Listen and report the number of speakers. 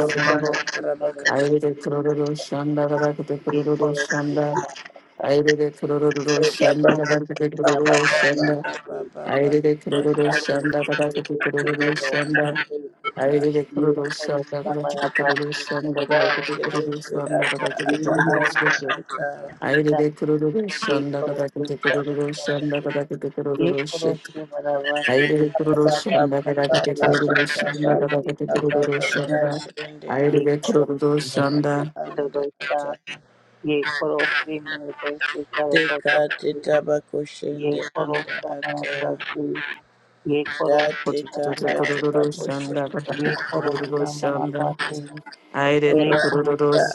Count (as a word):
three